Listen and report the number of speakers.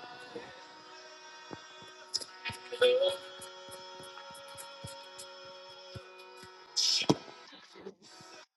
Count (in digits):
0